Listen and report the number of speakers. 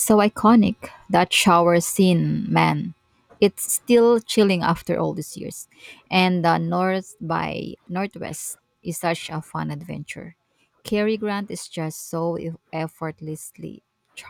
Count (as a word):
one